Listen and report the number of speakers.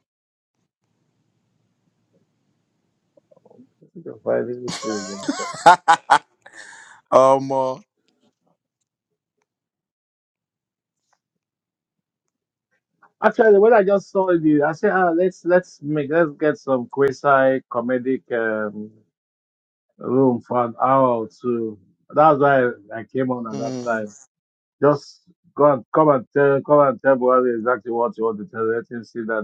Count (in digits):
2